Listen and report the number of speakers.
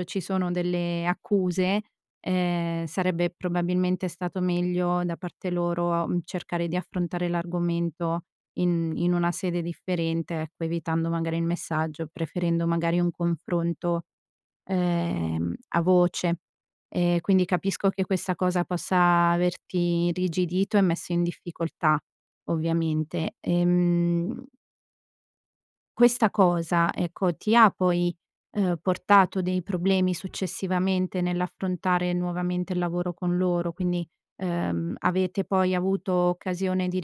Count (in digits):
1